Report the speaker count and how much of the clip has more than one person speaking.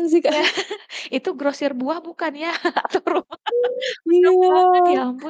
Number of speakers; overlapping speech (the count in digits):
2, about 17%